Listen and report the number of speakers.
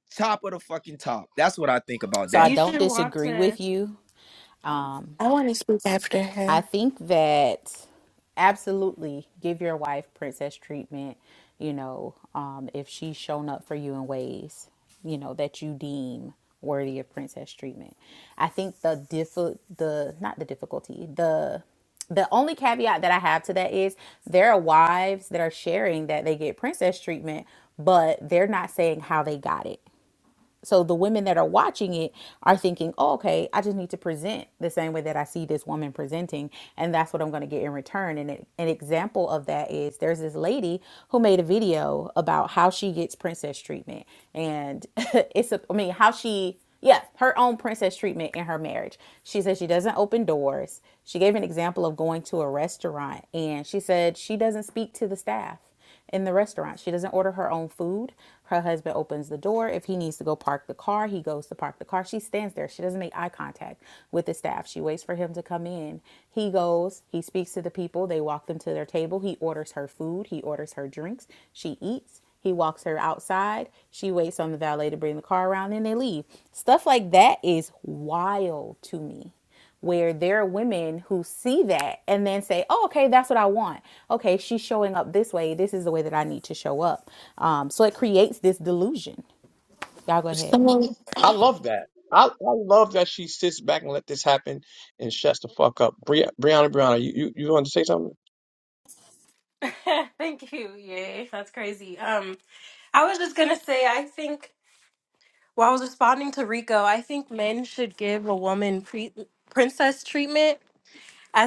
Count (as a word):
five